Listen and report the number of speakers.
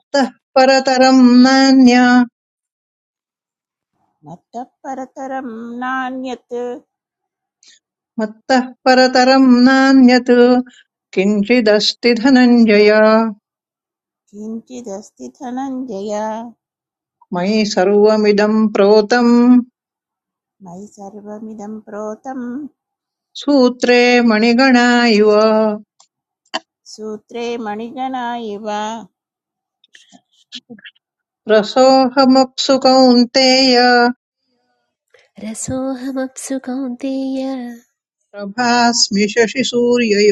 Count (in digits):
3